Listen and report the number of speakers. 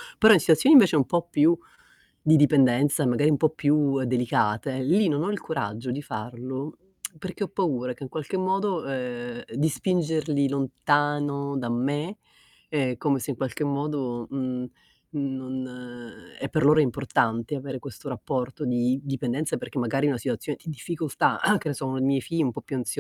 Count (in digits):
1